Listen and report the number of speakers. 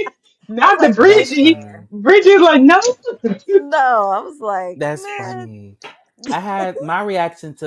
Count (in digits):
3